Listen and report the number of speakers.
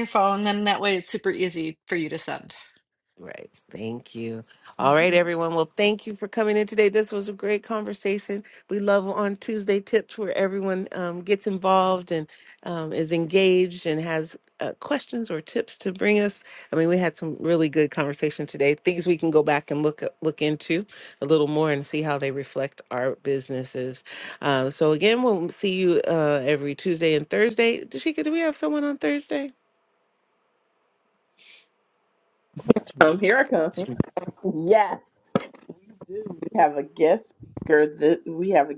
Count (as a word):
three